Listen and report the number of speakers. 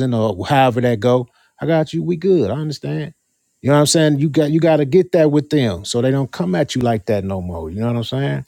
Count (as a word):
one